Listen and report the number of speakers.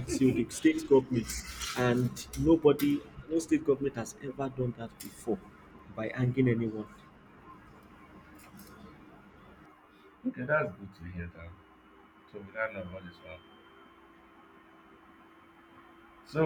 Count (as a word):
two